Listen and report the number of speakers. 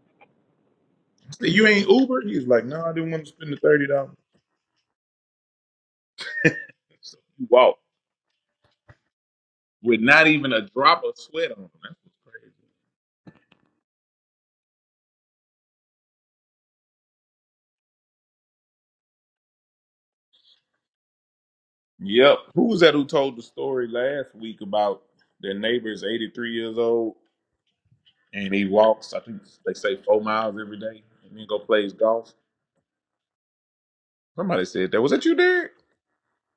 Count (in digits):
1